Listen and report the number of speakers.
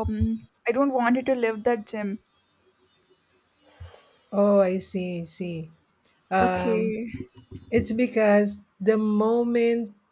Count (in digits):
2